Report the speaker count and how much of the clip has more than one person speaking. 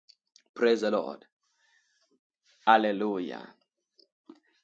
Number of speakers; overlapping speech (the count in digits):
1, no overlap